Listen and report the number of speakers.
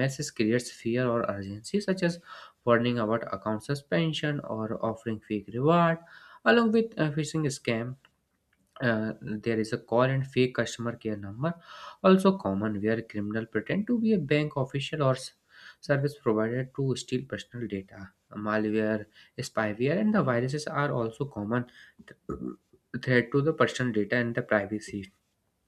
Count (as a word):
one